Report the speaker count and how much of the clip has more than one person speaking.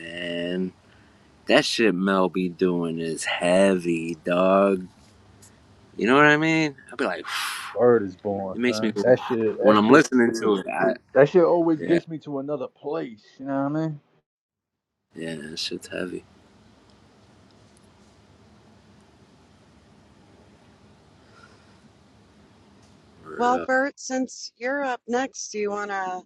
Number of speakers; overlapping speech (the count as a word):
three, about 6%